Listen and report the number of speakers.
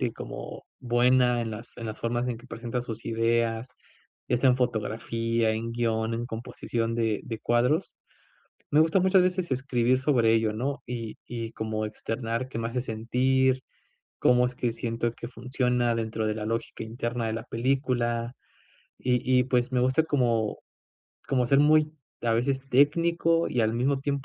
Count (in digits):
1